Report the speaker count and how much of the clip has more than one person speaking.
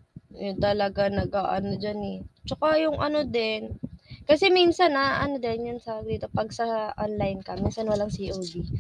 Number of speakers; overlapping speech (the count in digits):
1, no overlap